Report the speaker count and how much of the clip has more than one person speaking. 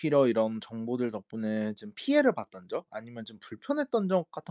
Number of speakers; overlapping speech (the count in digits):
1, no overlap